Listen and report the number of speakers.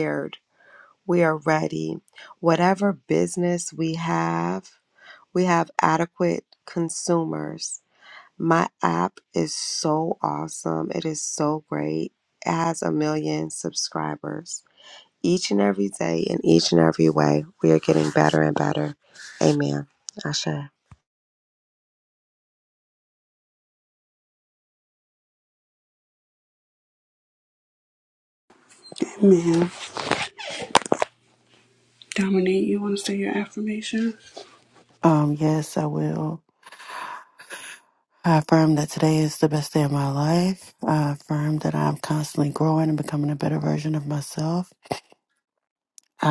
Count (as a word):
three